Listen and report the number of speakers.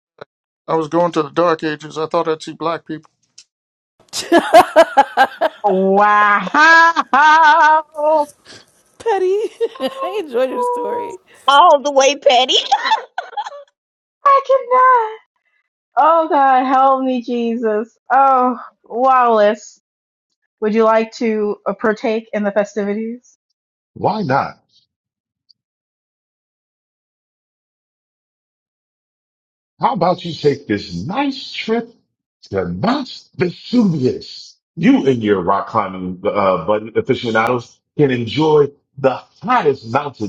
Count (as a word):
five